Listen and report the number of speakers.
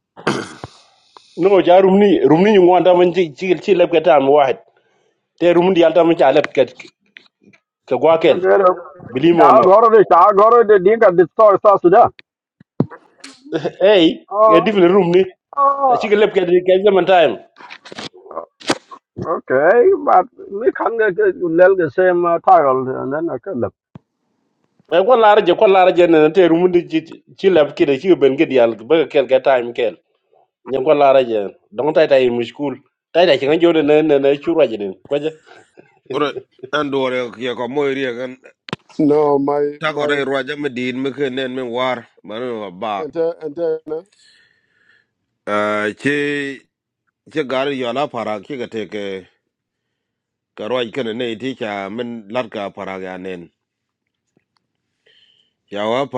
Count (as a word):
four